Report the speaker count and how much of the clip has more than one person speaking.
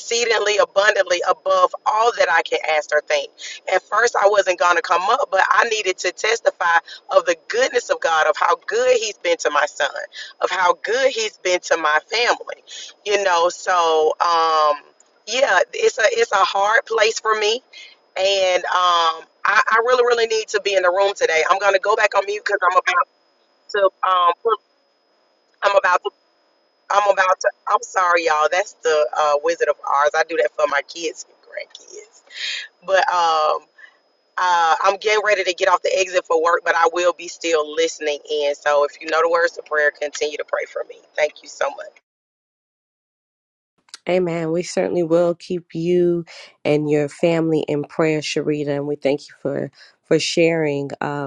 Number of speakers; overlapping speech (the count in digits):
2, no overlap